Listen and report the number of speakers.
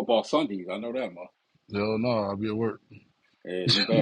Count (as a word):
two